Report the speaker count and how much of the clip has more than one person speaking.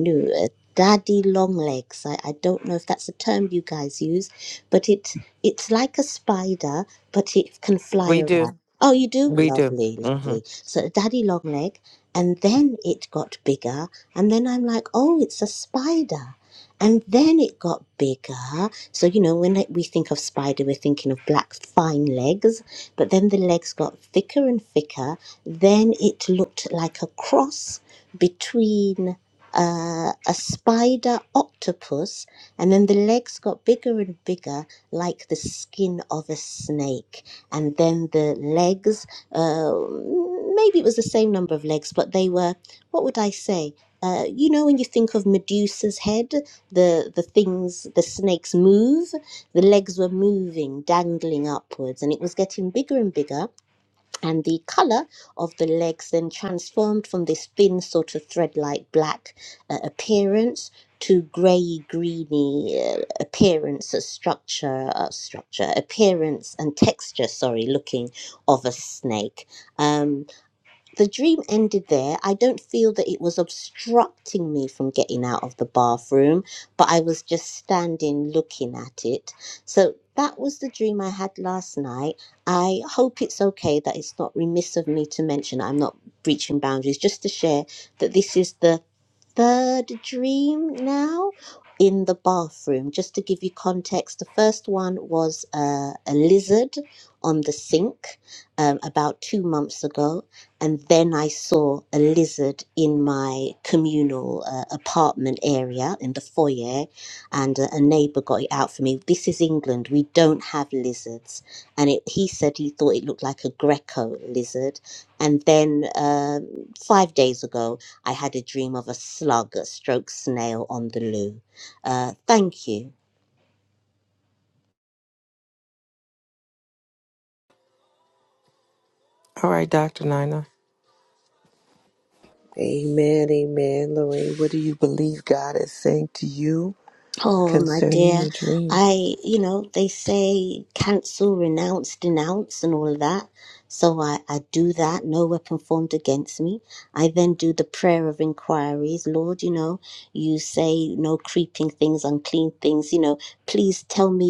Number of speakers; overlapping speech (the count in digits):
3, about 1%